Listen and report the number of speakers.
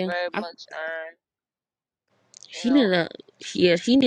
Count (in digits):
2